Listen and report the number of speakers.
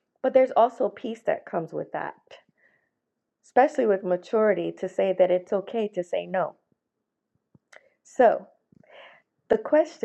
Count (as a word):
one